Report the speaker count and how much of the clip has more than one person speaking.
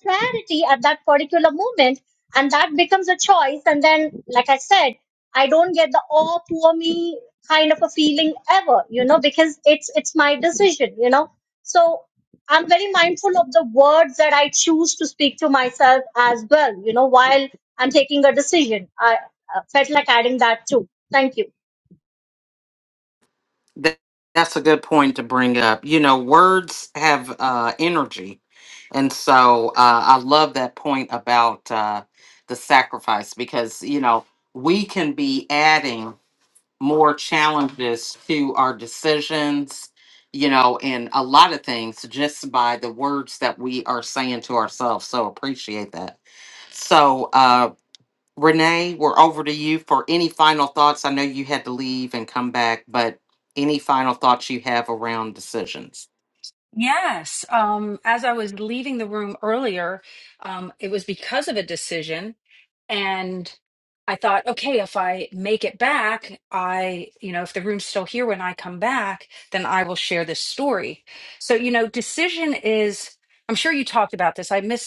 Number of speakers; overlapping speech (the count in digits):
3, no overlap